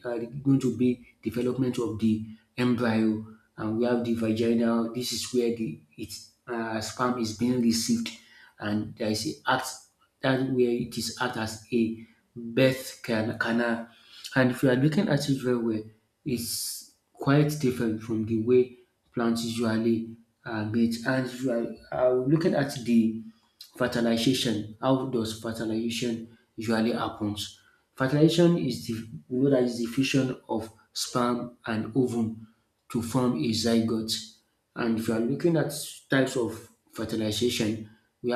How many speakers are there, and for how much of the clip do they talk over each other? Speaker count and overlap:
1, no overlap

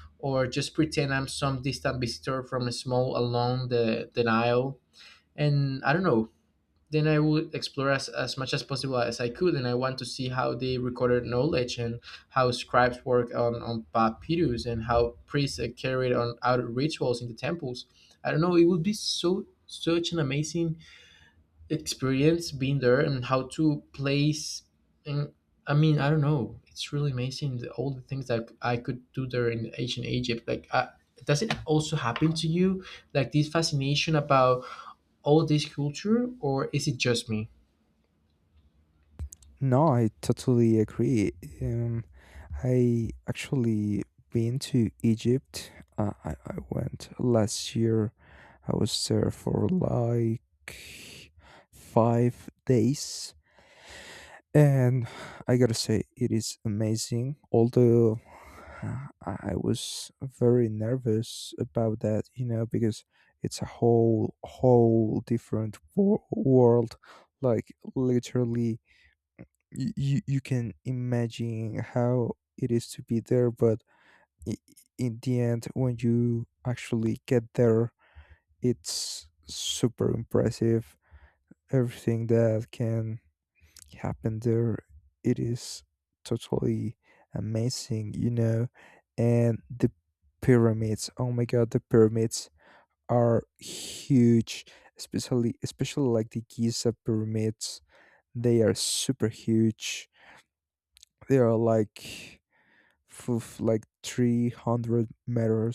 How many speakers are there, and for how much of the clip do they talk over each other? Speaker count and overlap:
2, no overlap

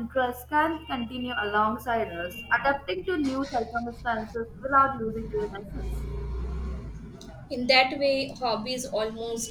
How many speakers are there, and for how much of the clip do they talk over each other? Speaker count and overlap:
2, no overlap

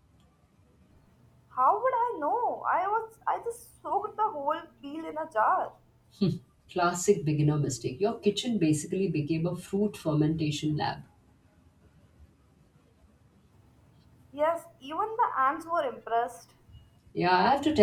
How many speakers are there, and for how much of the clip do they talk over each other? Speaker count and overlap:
2, no overlap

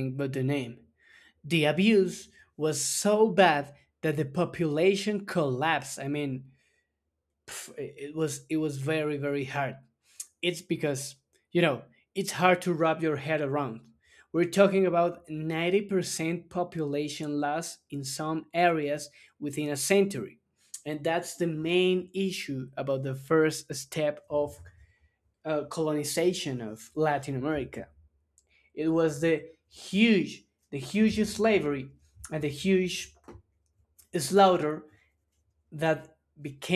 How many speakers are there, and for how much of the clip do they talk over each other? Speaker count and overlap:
1, no overlap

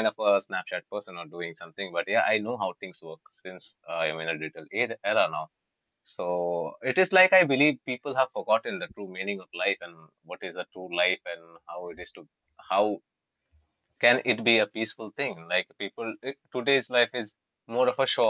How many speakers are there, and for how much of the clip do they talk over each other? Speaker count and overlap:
1, no overlap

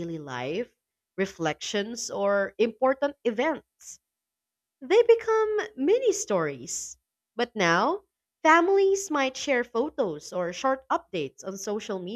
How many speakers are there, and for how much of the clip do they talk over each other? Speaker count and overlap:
1, no overlap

